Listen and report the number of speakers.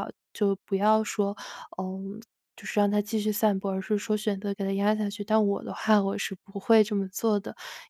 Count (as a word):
one